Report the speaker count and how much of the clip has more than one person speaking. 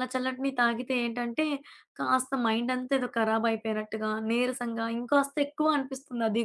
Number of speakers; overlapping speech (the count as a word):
one, no overlap